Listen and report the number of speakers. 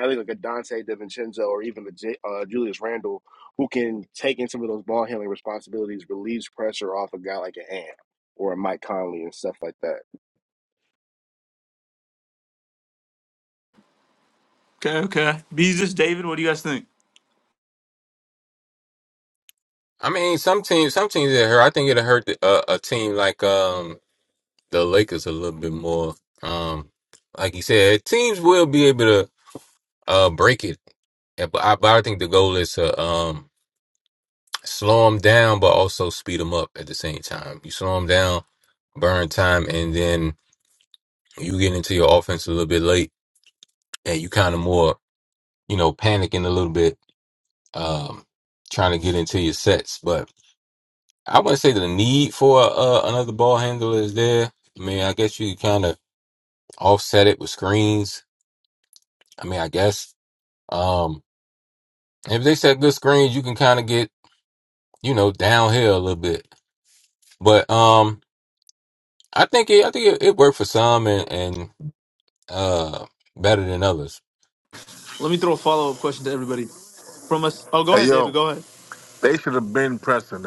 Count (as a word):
four